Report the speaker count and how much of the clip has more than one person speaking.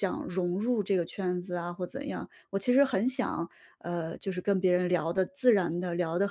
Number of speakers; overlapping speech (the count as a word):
one, no overlap